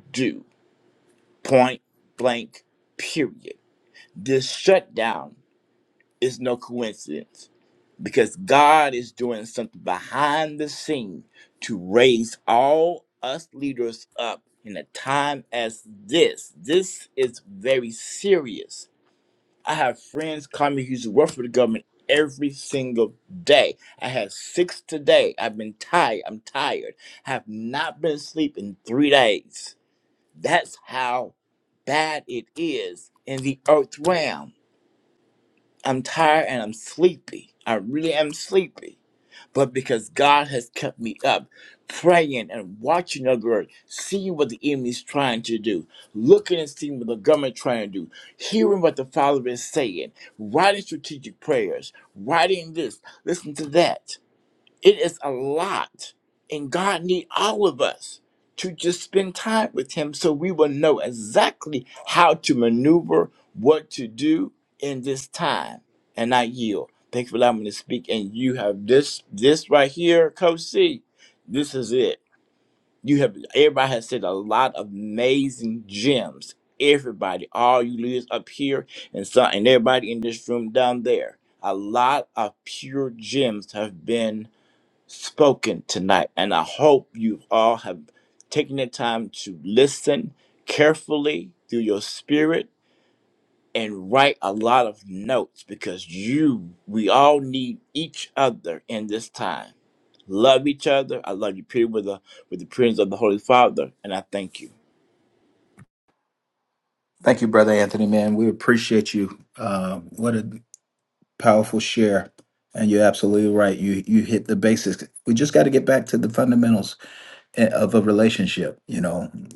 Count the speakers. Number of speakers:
2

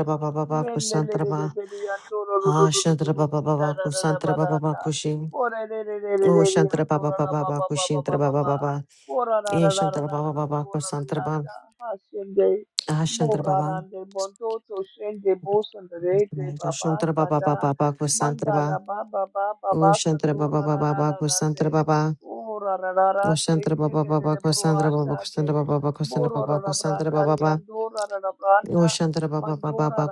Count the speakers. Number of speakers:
2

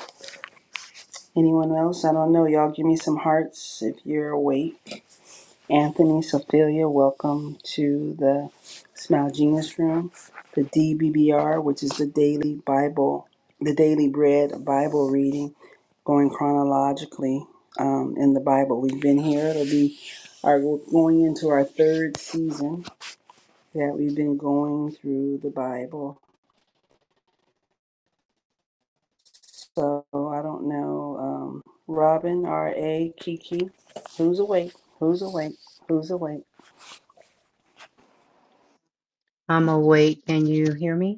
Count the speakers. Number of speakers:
2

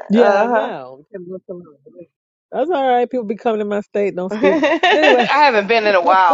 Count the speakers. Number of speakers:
2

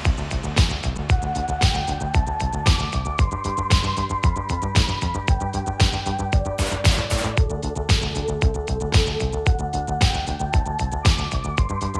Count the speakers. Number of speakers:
0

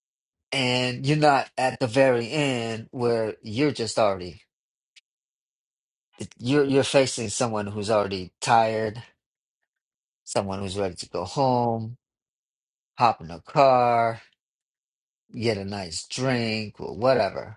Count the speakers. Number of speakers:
1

